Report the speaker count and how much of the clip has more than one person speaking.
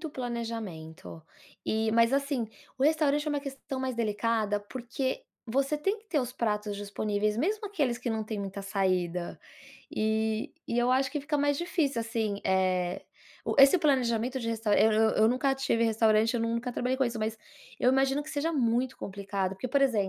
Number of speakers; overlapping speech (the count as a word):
one, no overlap